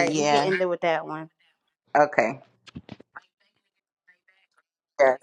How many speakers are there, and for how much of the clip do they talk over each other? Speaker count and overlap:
two, about 10%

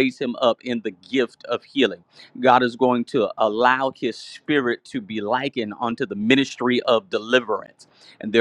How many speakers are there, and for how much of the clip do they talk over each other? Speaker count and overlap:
one, no overlap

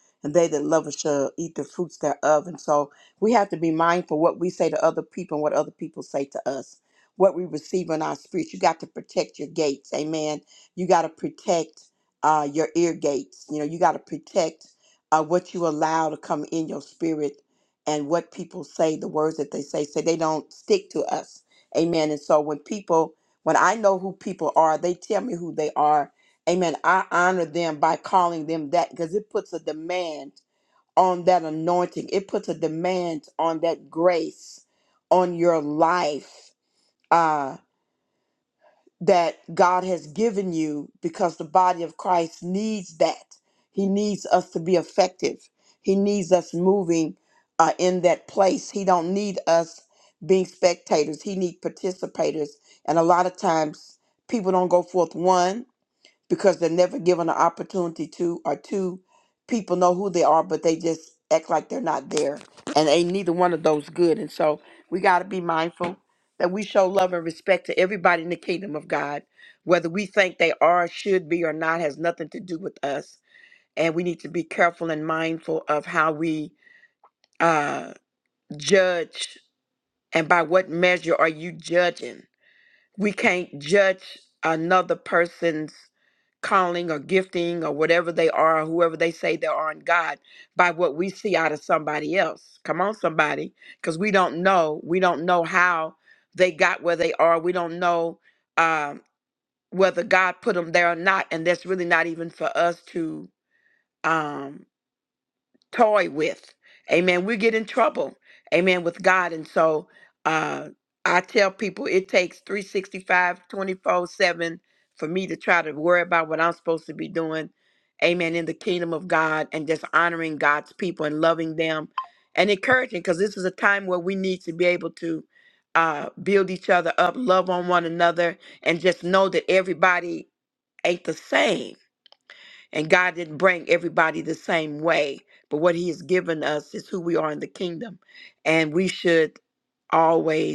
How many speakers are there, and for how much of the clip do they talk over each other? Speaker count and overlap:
one, no overlap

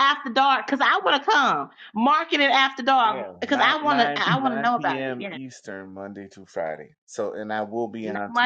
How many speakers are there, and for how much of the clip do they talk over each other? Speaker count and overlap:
two, about 33%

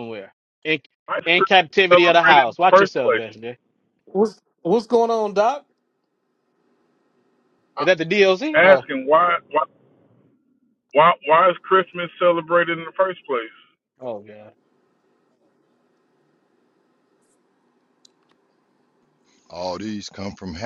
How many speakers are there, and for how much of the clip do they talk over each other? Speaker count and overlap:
four, about 9%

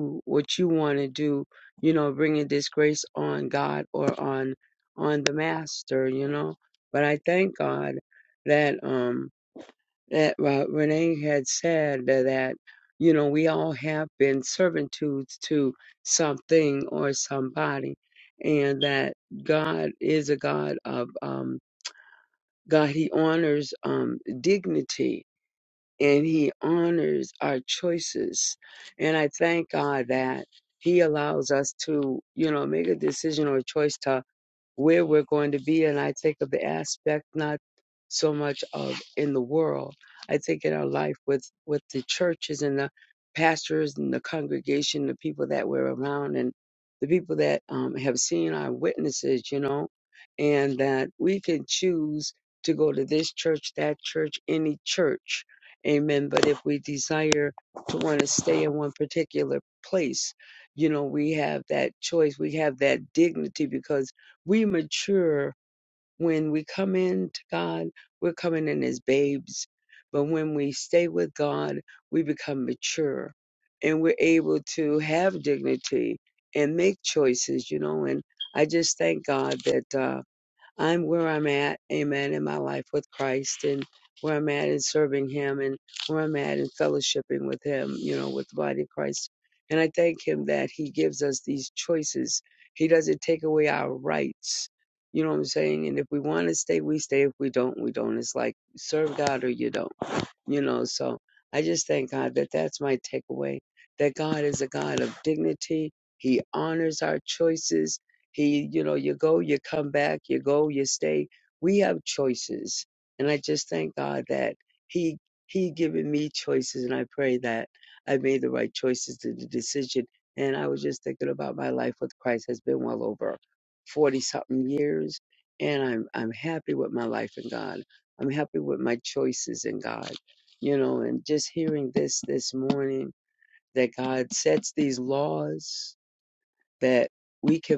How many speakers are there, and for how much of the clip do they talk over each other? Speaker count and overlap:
one, no overlap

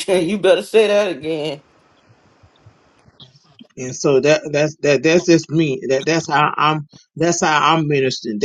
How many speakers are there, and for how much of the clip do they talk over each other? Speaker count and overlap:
two, no overlap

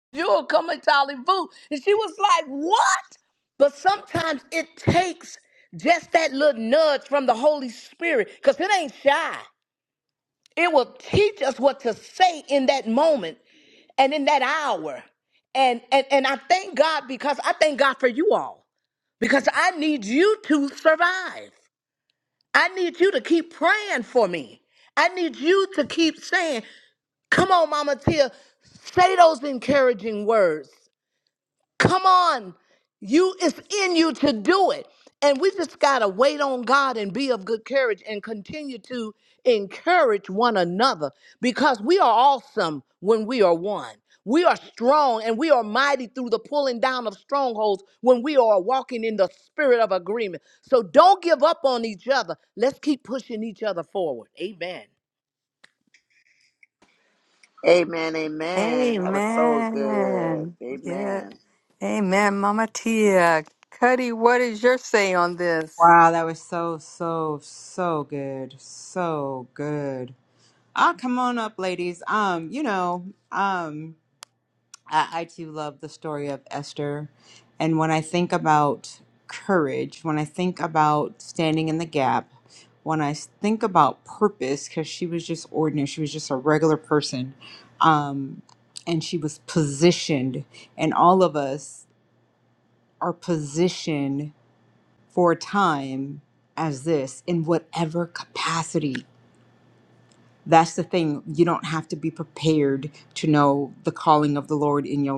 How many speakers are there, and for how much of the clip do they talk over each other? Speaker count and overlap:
four, about 1%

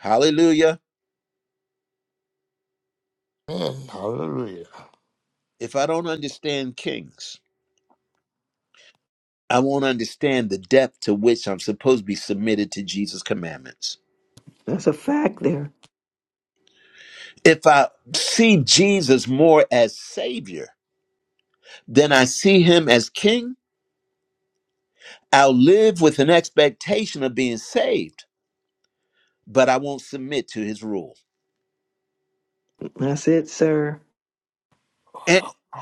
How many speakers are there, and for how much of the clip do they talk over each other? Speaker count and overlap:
three, no overlap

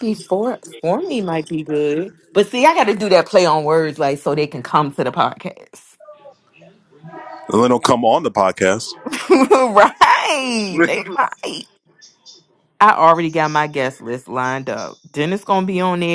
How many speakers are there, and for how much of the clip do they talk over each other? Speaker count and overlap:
two, no overlap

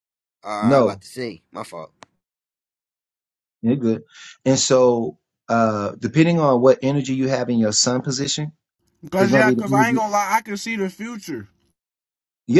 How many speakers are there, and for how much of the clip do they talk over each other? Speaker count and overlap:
three, about 9%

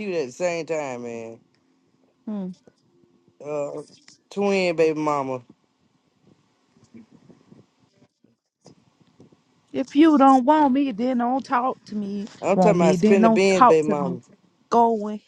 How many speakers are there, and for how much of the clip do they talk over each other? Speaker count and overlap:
two, about 12%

